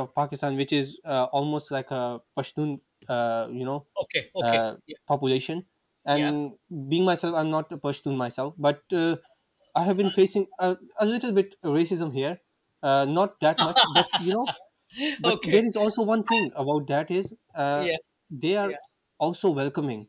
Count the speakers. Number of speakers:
2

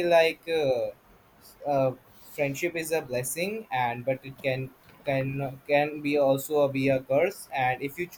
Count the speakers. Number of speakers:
1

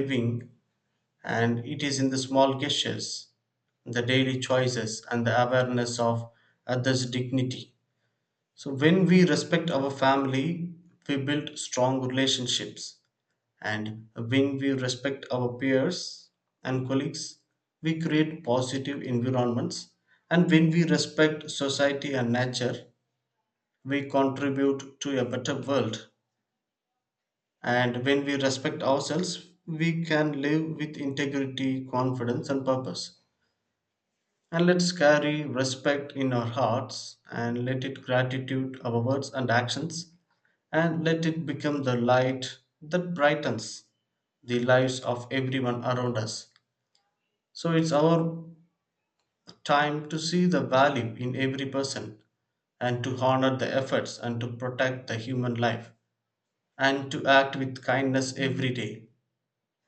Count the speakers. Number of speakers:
1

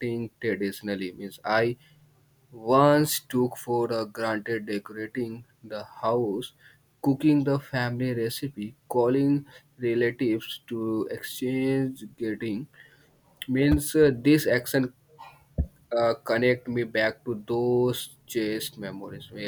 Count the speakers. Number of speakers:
1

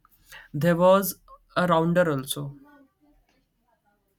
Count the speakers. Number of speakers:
1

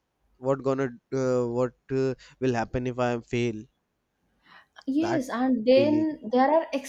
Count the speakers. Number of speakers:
2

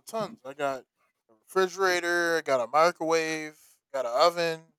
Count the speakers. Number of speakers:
1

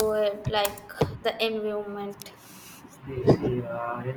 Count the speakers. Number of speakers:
2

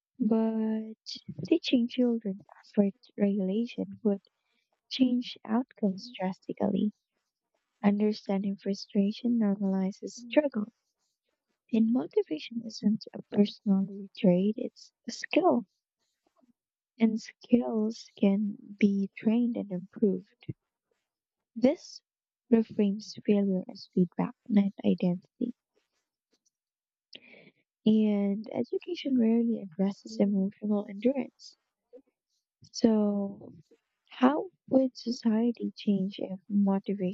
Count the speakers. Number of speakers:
1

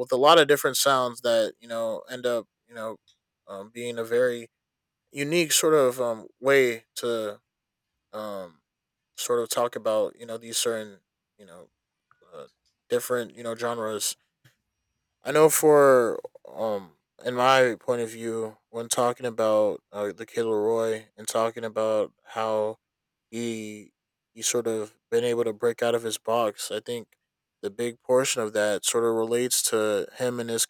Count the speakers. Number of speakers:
1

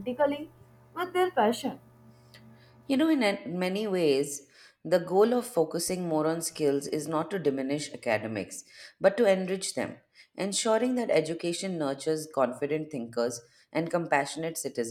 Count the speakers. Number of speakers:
2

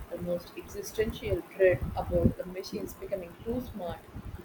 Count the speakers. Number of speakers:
1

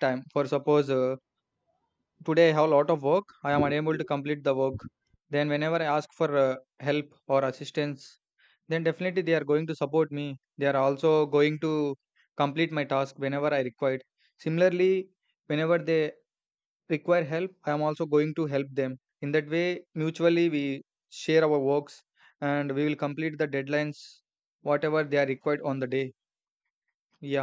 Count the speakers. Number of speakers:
1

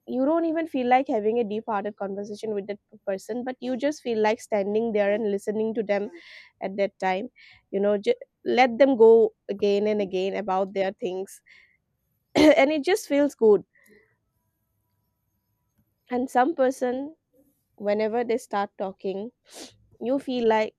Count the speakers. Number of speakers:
1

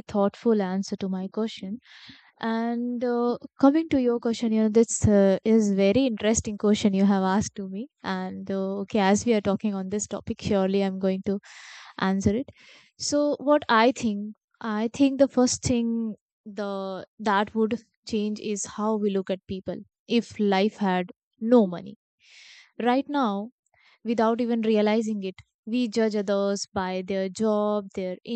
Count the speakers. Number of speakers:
1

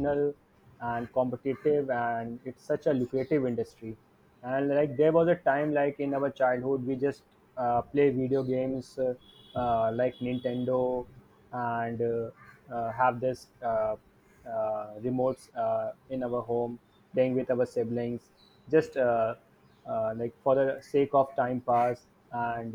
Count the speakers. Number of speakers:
1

